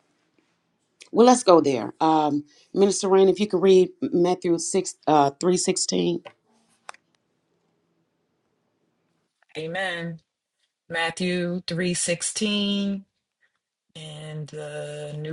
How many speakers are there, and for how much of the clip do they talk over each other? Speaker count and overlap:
two, no overlap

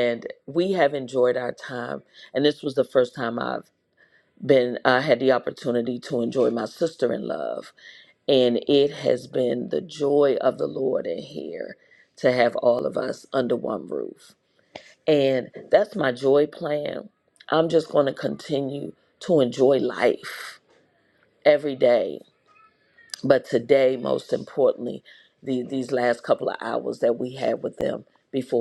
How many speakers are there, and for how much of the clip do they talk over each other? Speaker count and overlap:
one, no overlap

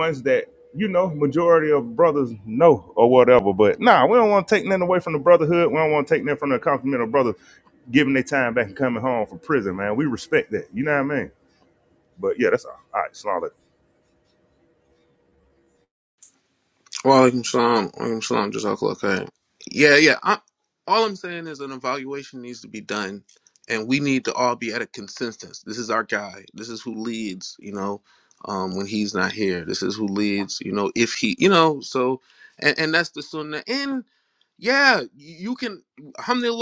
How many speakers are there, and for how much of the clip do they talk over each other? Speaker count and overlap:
two, no overlap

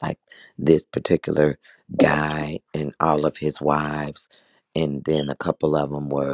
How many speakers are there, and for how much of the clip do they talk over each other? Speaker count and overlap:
one, no overlap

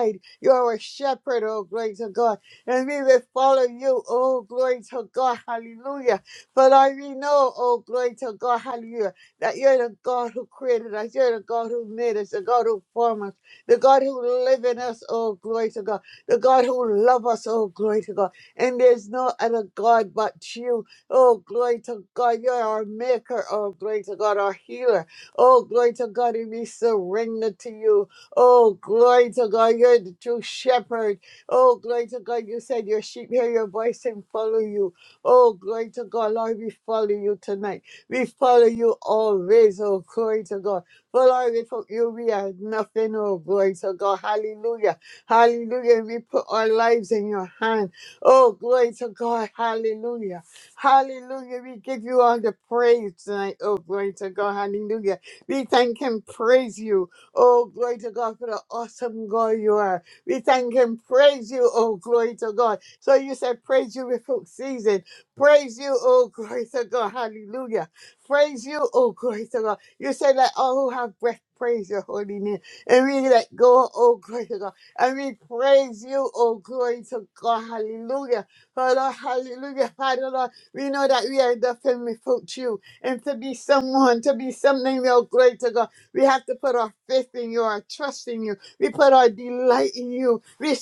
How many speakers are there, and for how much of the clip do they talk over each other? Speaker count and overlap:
one, no overlap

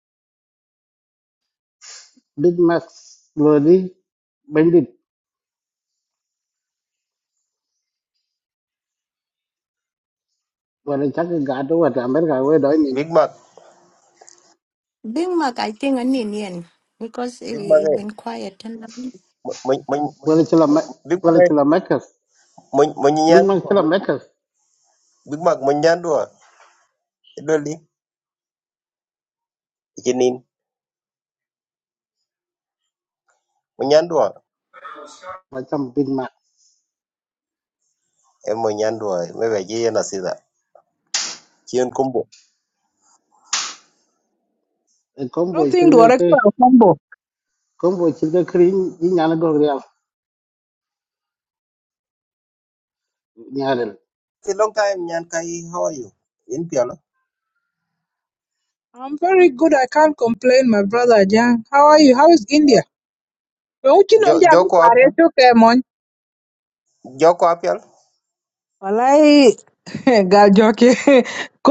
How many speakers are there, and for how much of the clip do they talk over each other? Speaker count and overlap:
four, about 4%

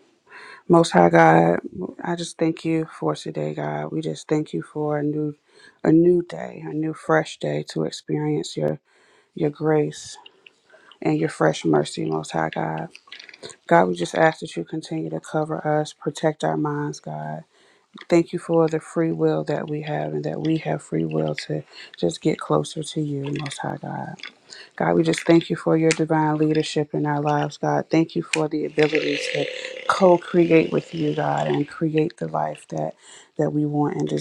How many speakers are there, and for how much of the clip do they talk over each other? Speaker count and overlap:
one, no overlap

